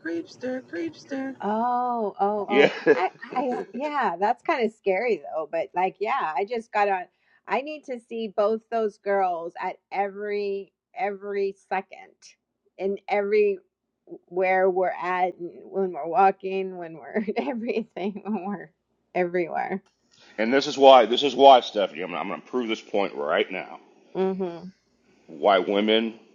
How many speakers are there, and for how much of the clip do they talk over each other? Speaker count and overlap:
3, about 1%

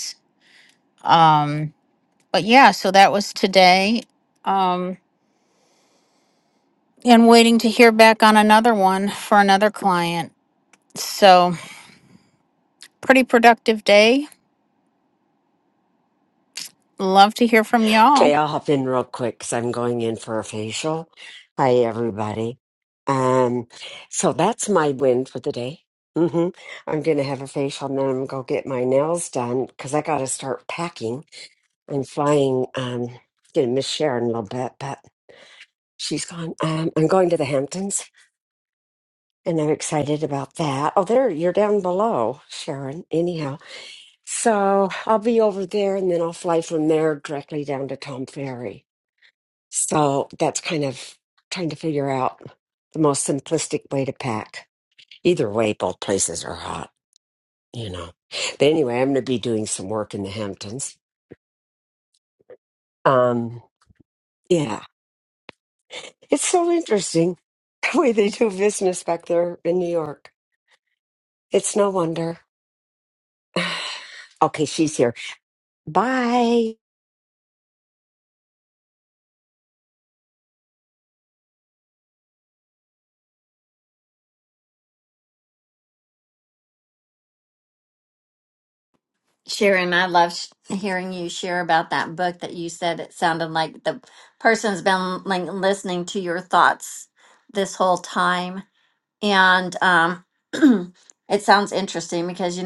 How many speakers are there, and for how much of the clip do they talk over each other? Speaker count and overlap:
3, under 1%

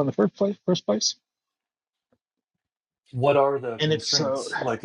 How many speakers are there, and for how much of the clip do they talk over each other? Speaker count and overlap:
2, about 22%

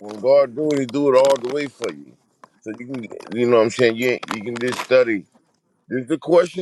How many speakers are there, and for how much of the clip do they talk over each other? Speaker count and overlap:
1, no overlap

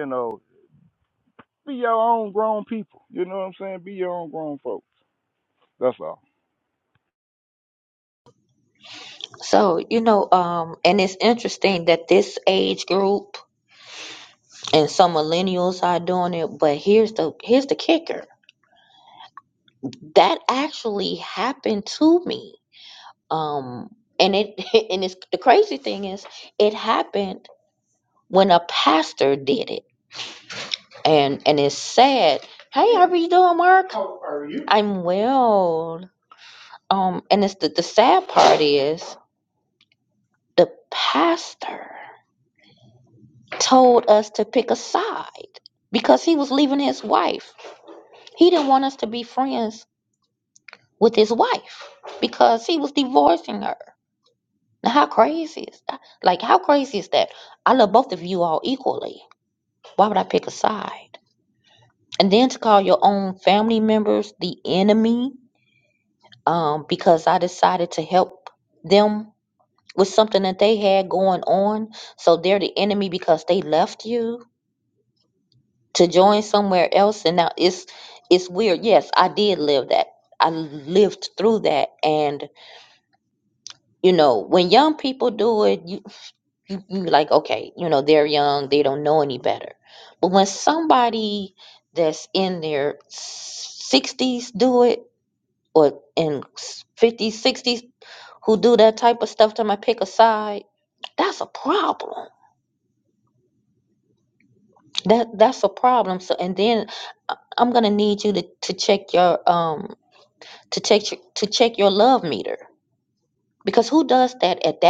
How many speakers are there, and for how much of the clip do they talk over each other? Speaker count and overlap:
2, no overlap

